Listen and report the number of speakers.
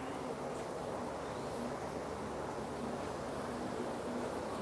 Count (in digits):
0